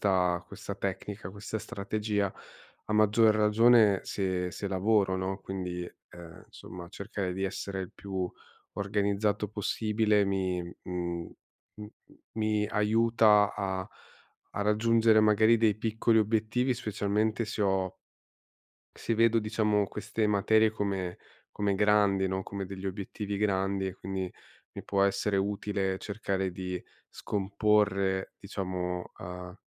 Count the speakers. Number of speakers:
one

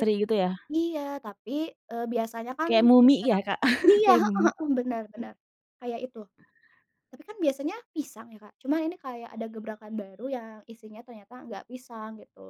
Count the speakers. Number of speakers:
two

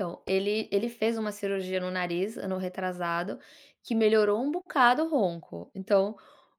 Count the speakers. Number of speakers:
one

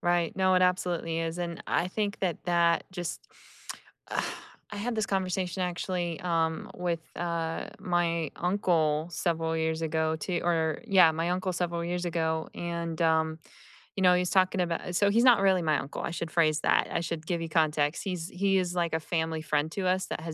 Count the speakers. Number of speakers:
one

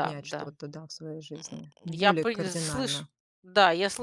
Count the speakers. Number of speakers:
two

